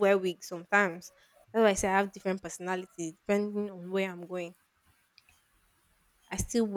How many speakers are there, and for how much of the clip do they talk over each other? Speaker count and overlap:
1, no overlap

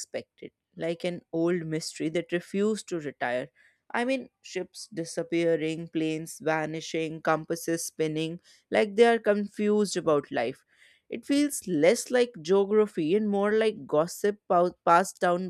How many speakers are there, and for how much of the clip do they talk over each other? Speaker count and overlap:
1, no overlap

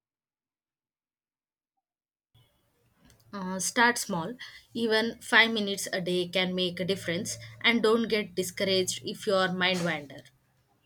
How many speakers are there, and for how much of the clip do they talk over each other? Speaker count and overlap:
1, no overlap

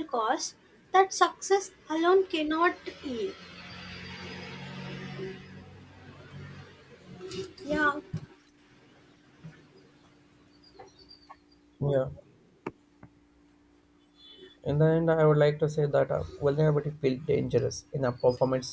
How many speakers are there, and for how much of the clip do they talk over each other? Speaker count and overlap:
2, no overlap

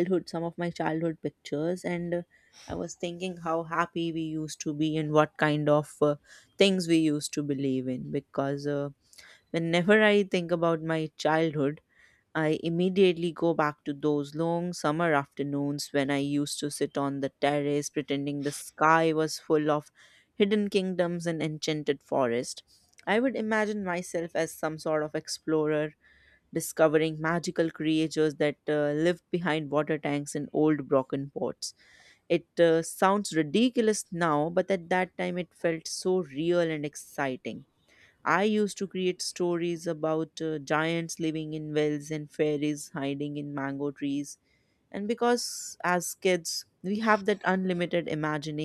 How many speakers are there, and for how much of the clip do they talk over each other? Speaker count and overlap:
1, no overlap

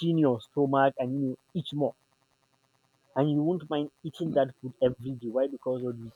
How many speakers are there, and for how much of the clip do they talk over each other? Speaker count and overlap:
1, no overlap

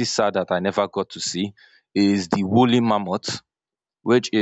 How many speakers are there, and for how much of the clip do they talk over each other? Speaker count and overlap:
1, no overlap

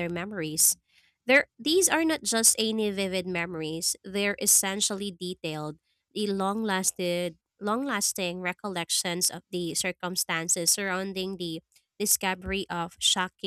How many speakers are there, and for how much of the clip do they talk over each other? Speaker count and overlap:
1, no overlap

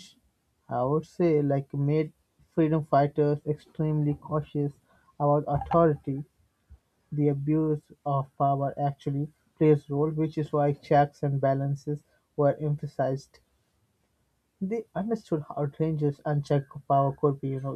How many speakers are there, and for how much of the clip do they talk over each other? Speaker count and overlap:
1, no overlap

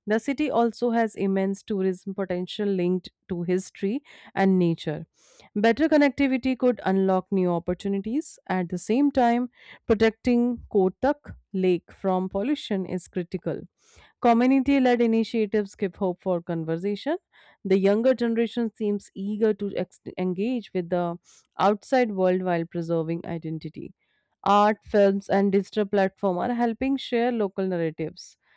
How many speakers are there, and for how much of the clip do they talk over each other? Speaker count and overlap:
1, no overlap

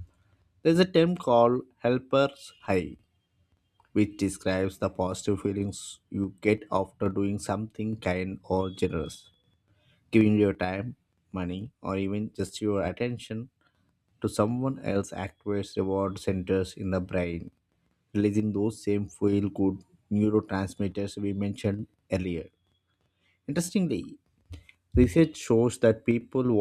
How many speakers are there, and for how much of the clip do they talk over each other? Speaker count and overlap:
1, no overlap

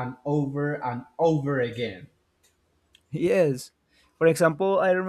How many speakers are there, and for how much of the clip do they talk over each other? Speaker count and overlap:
2, no overlap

